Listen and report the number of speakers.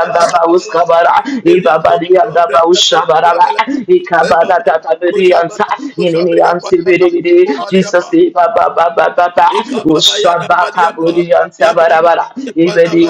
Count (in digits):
2